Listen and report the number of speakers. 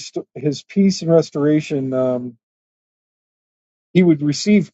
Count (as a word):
one